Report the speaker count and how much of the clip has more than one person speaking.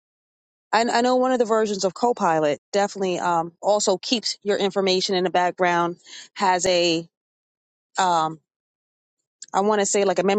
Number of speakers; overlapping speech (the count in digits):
1, no overlap